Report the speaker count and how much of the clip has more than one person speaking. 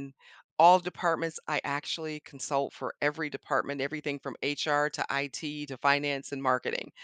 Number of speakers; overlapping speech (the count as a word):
one, no overlap